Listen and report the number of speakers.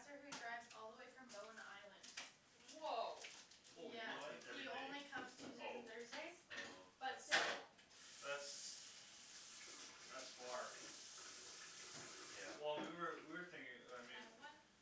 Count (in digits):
4